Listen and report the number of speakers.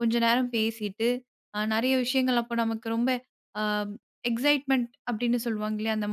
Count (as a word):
one